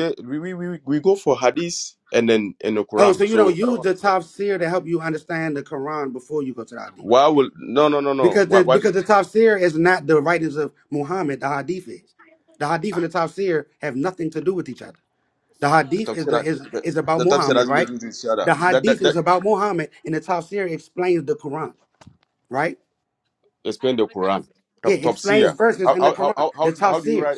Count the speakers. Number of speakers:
2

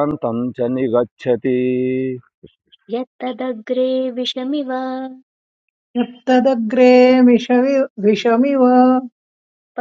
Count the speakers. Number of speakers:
3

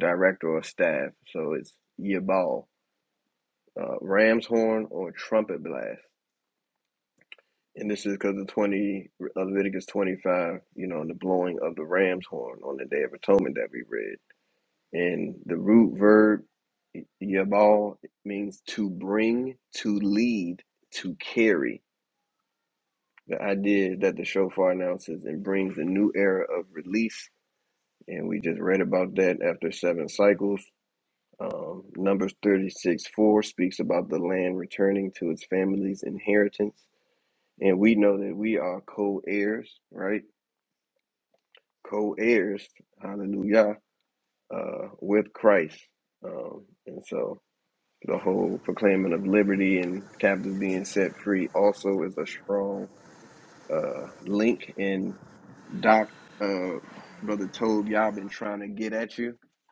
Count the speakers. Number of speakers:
1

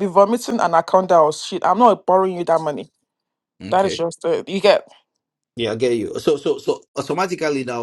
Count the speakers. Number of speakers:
2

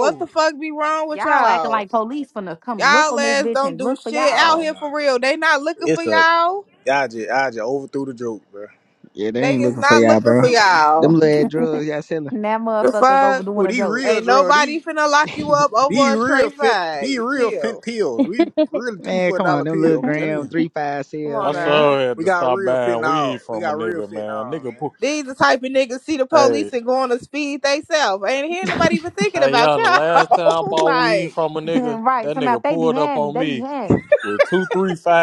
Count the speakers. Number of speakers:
5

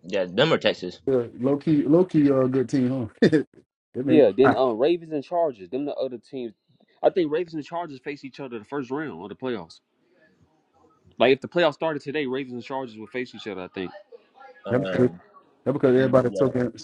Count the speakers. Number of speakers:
3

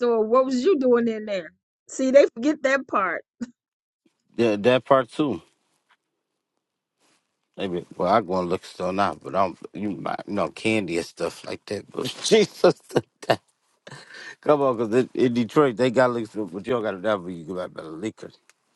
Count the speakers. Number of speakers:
2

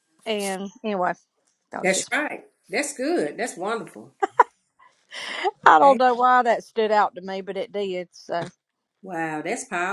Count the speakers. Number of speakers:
2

